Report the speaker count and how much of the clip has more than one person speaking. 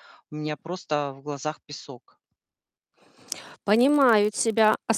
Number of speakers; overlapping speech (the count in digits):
2, no overlap